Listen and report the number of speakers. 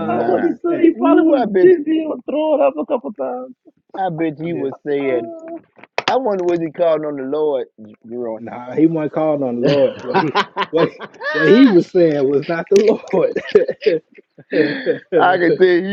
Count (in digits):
3